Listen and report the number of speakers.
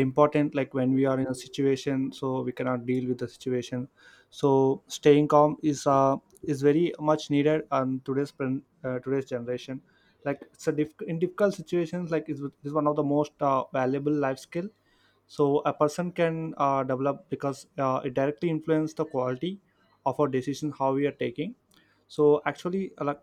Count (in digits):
1